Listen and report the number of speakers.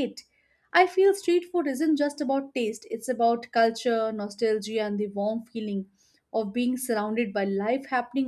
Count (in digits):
1